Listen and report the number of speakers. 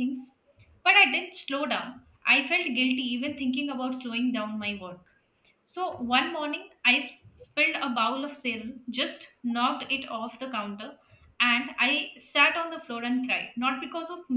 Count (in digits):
1